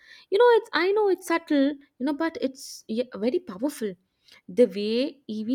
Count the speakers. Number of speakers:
one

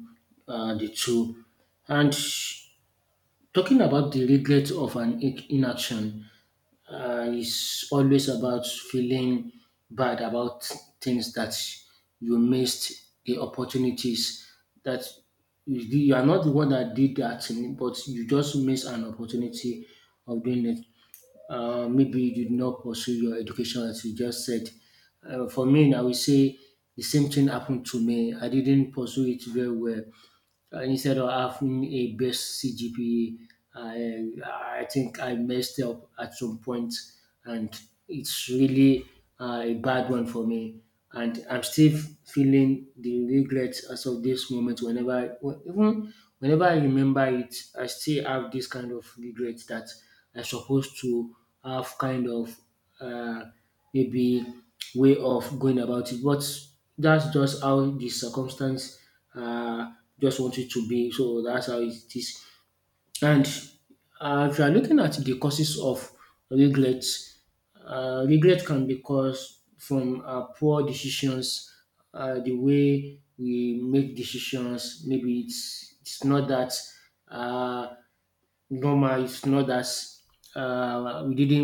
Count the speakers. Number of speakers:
one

